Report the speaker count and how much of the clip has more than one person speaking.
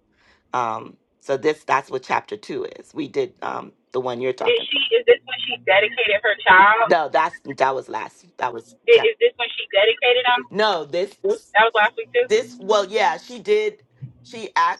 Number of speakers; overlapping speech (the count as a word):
two, about 2%